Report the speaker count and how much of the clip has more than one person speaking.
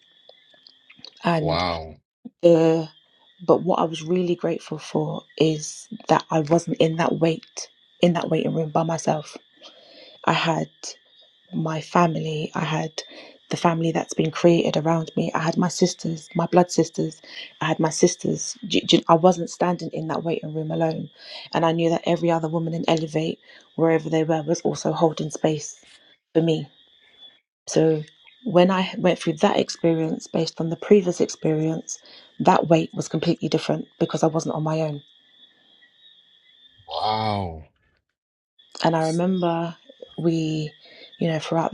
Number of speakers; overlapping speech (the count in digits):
2, about 1%